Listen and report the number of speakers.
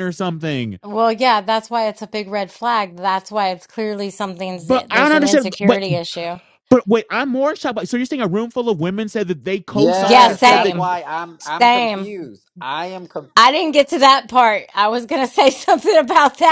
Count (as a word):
three